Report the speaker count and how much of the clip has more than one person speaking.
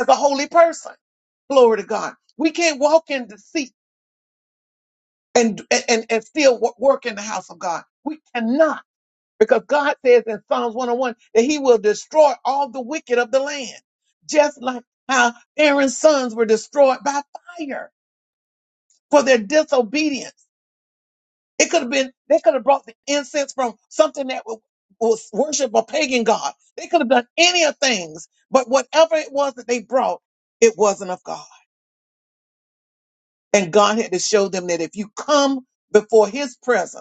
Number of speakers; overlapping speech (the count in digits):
1, no overlap